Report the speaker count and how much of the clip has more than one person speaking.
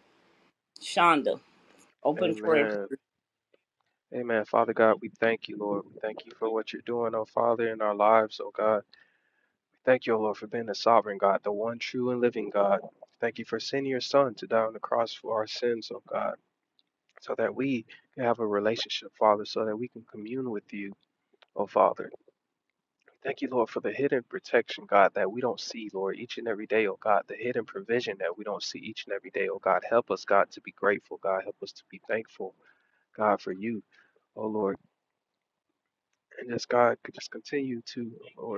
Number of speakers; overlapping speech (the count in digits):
2, about 1%